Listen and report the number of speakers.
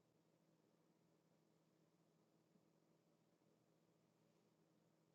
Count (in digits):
0